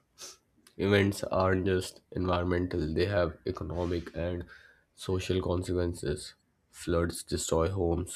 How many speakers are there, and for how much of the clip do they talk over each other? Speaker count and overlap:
one, no overlap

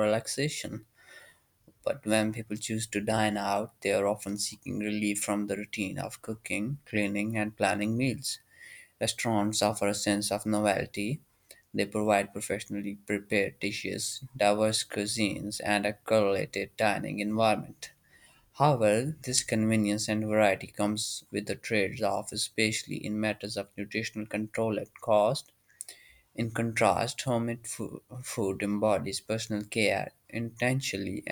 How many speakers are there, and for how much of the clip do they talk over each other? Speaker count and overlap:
one, no overlap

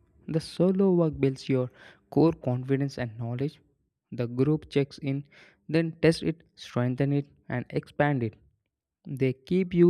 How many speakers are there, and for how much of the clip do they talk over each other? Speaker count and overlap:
one, no overlap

